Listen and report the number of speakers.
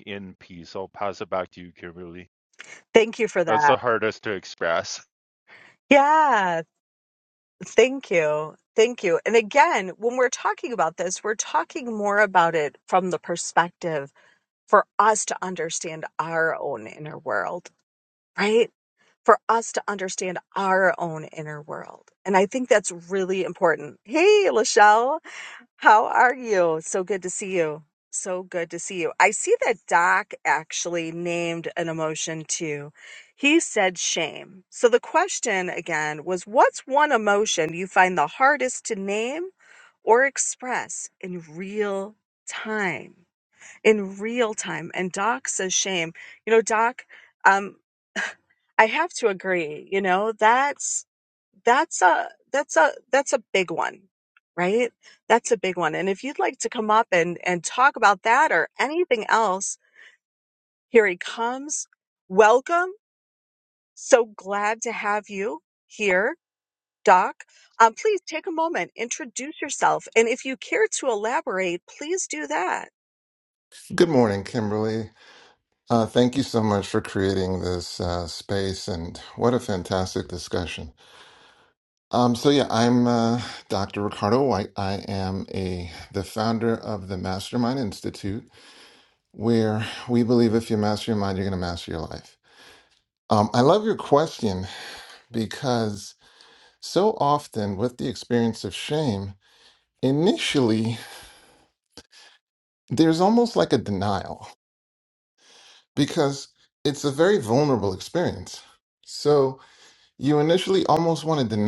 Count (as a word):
three